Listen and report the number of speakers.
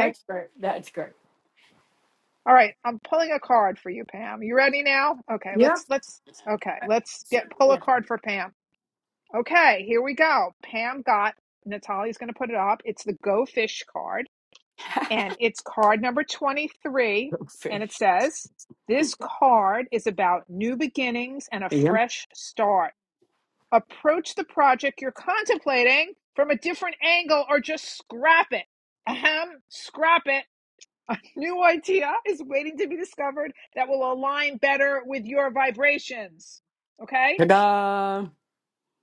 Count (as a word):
two